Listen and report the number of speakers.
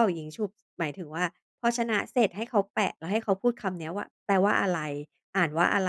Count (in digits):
1